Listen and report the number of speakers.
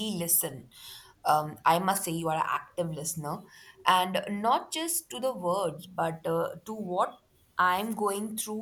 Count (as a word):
one